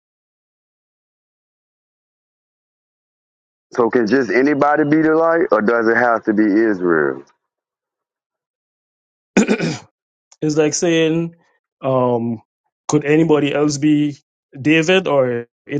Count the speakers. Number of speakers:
two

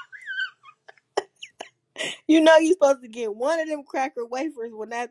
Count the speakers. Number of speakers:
one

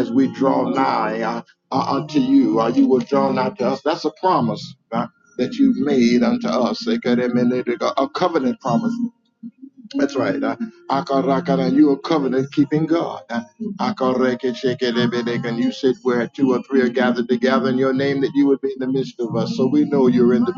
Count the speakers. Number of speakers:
one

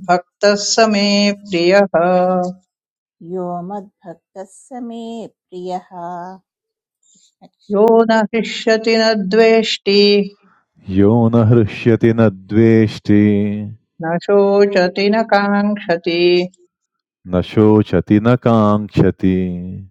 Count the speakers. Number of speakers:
three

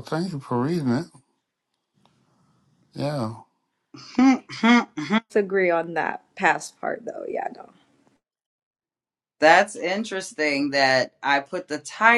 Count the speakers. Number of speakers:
three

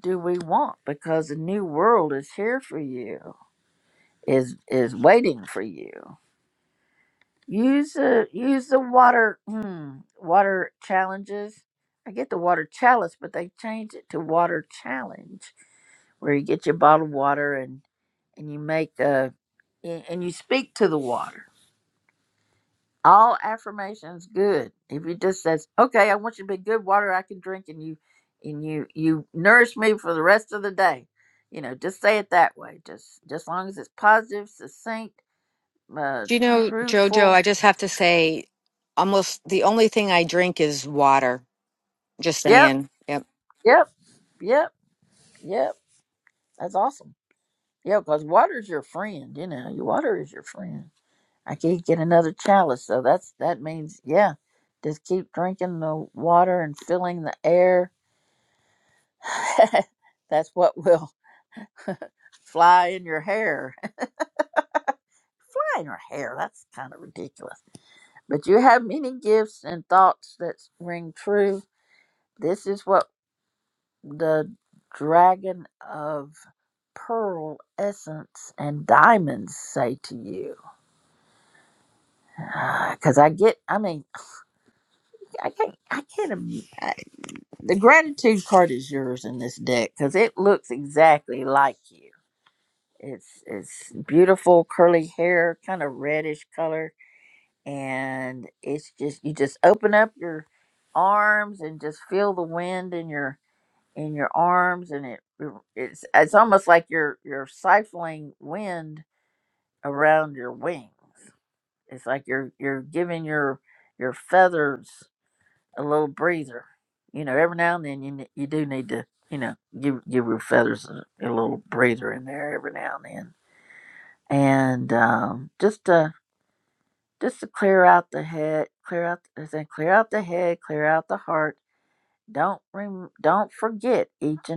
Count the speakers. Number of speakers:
two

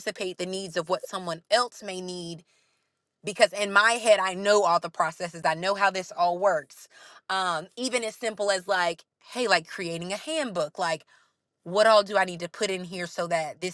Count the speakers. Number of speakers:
one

